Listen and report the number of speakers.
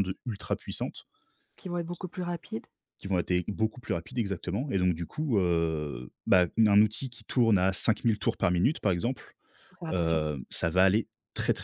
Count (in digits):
2